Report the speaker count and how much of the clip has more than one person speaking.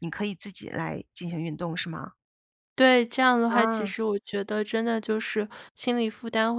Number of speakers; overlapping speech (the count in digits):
2, about 6%